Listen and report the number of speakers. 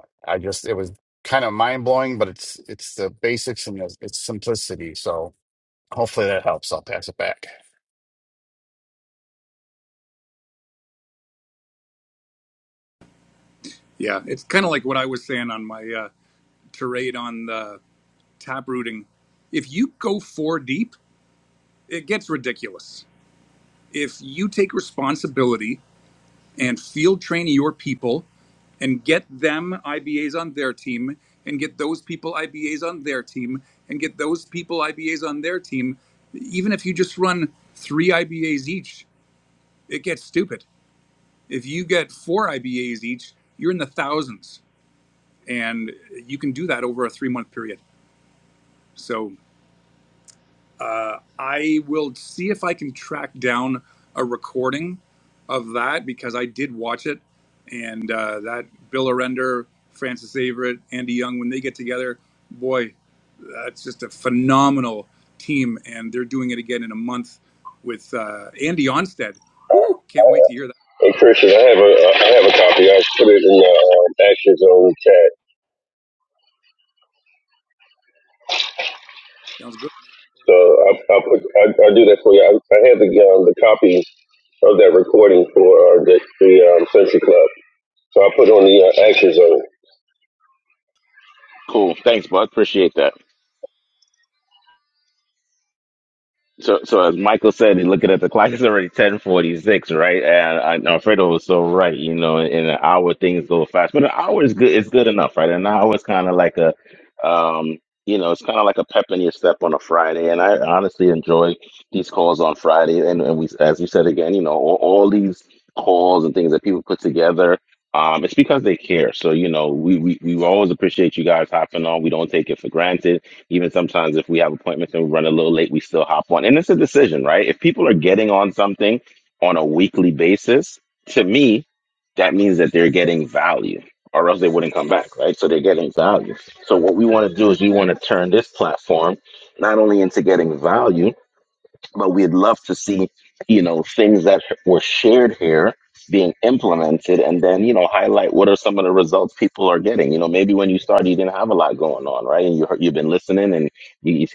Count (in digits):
4